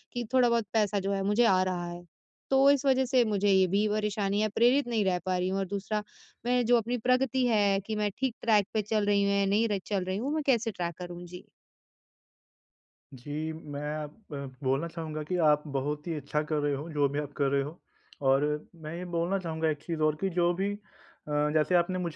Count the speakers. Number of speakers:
2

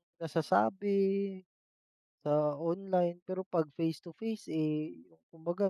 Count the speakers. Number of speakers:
1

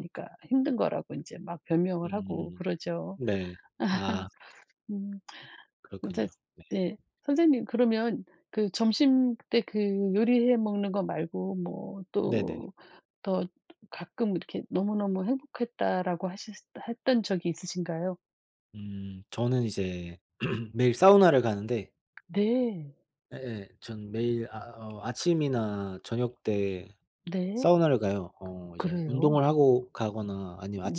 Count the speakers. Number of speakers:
2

